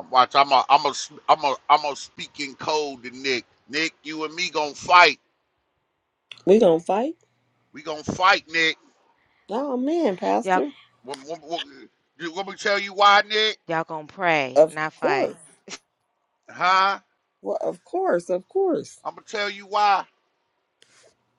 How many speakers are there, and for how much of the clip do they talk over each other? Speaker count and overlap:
3, about 3%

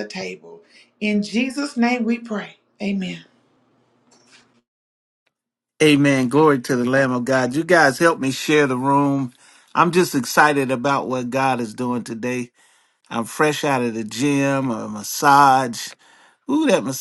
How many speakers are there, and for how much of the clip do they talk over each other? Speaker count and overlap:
2, no overlap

